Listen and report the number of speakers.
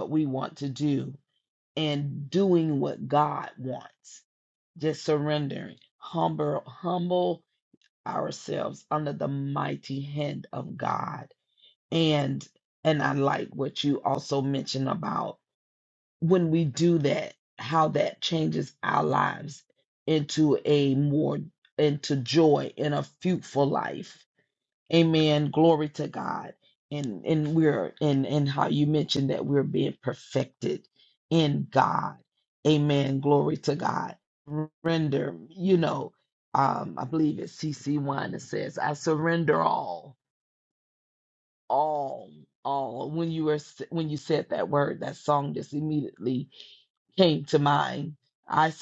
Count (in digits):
1